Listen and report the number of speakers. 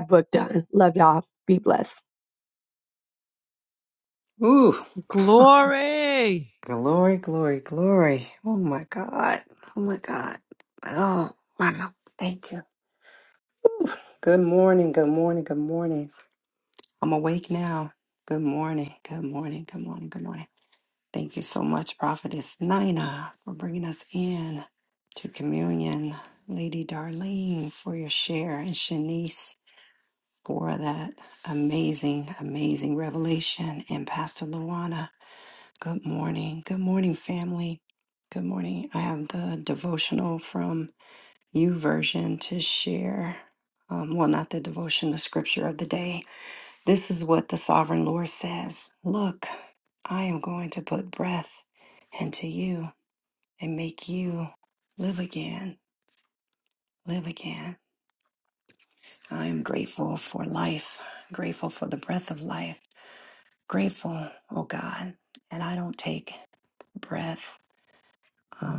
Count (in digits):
3